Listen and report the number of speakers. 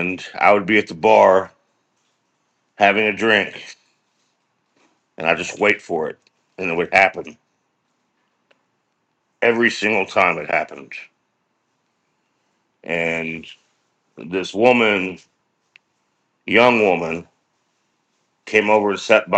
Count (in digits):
1